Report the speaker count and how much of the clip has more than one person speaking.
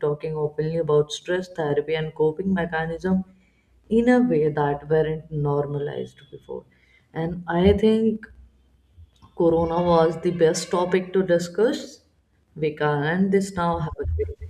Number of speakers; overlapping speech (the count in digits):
1, no overlap